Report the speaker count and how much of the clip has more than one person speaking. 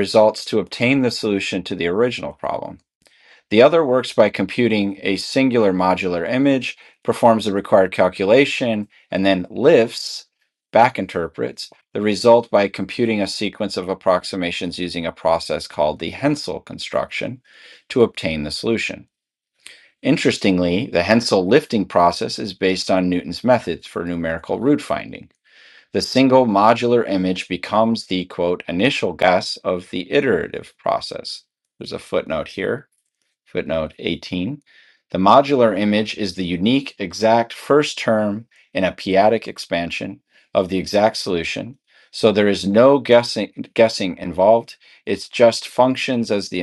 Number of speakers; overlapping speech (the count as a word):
one, no overlap